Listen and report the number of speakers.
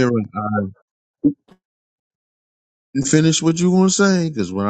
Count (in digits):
1